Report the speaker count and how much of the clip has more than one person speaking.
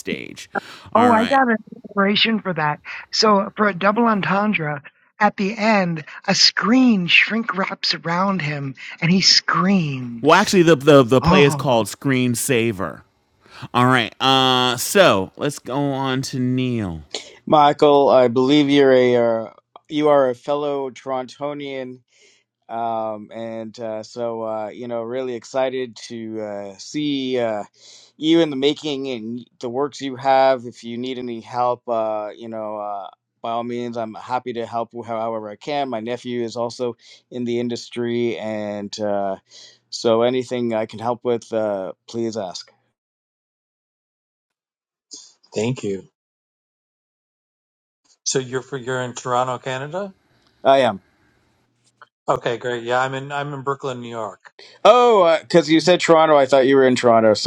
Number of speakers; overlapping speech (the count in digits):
4, about 2%